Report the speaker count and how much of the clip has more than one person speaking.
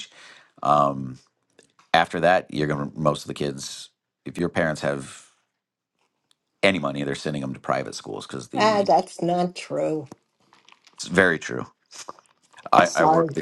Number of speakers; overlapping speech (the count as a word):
two, about 7%